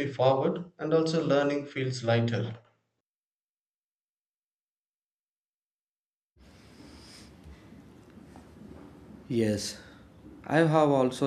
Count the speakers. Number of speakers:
2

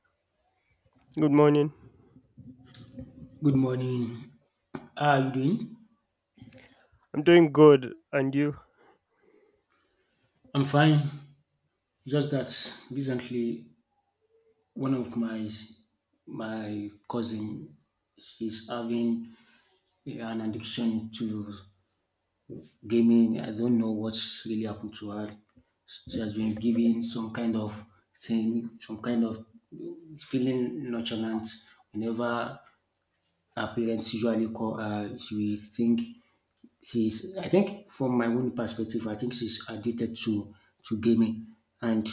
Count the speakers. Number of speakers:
2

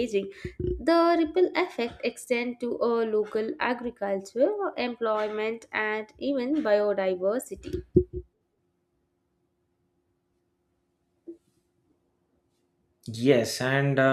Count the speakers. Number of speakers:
2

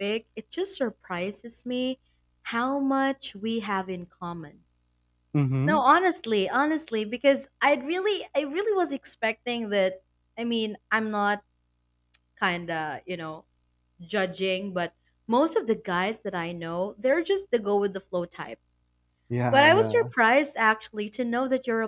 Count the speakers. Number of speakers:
2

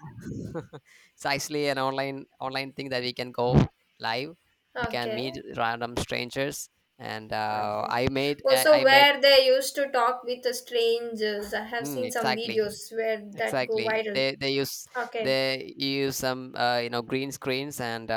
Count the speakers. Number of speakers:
2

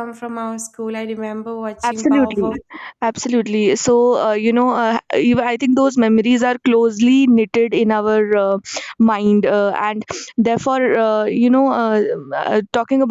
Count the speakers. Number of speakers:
2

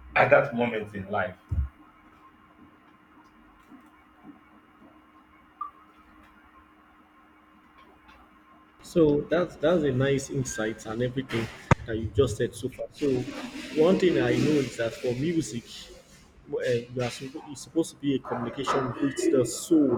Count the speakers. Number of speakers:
2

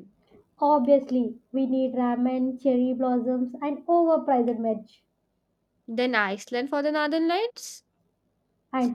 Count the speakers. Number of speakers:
2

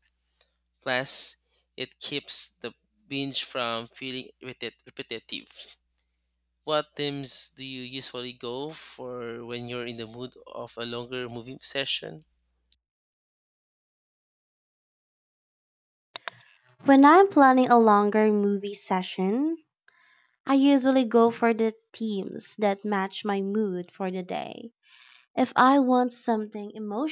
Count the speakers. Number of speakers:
2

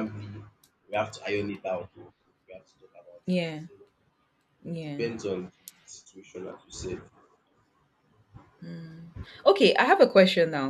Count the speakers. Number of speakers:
2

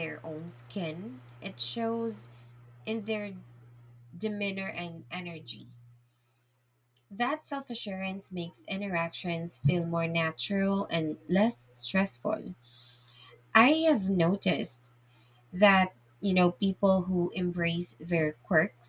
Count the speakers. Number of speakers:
1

